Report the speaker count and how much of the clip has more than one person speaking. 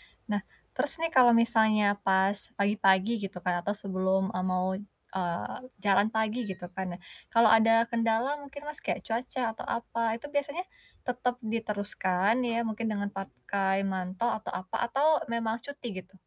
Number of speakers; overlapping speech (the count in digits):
1, no overlap